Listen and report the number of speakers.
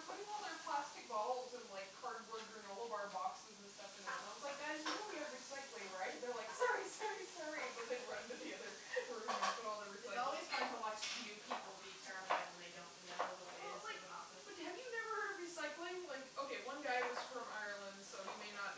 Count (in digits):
2